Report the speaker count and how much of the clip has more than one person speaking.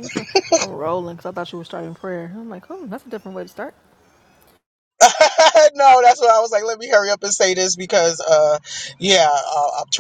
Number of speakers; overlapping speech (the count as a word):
two, no overlap